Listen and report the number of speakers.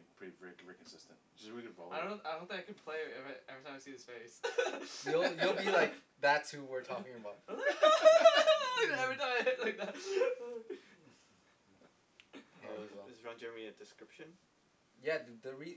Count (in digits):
4